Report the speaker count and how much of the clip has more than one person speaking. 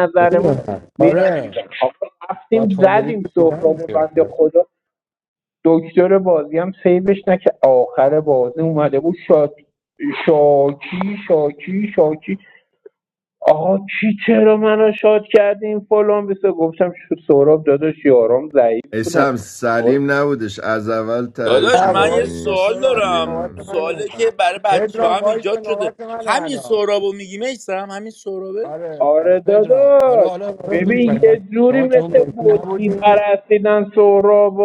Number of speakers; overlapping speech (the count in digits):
4, about 32%